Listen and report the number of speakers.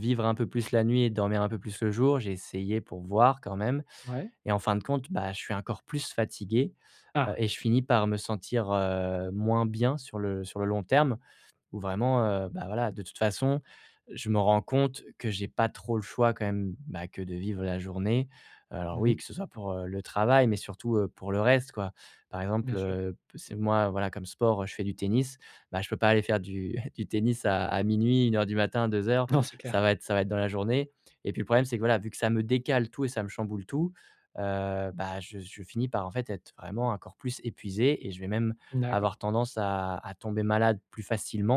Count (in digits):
2